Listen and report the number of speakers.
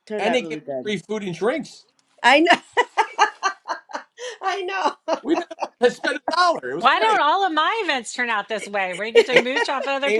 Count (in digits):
3